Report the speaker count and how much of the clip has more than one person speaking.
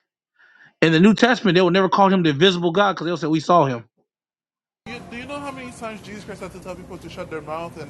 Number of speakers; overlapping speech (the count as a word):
two, no overlap